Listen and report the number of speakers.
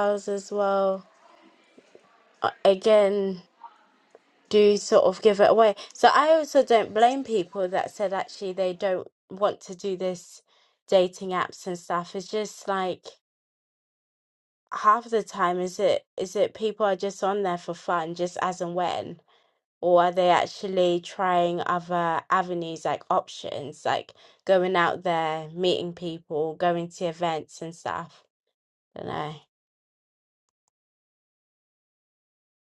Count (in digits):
1